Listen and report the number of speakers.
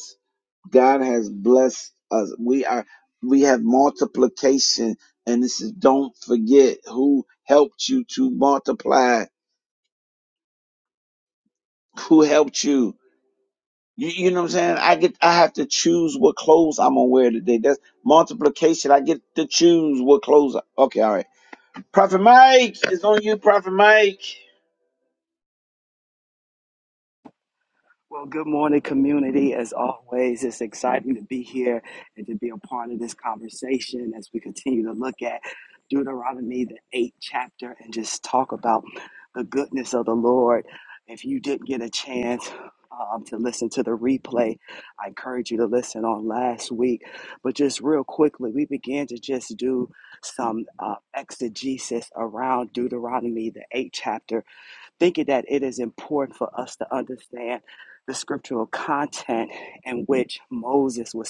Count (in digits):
2